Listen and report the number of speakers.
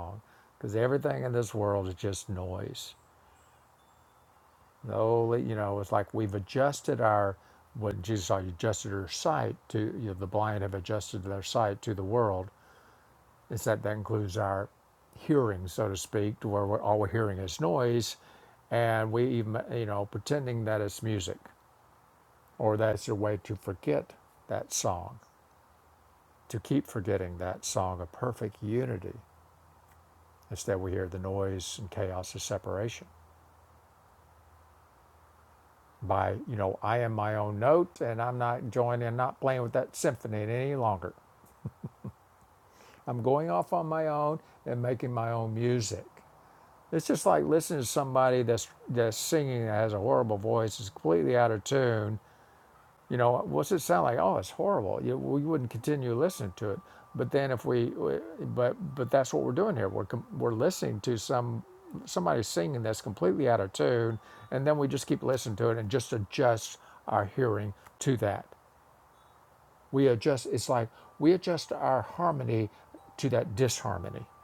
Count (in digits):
1